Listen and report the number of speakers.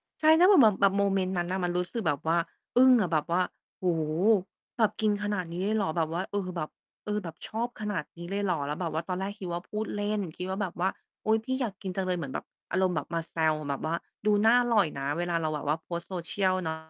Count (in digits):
1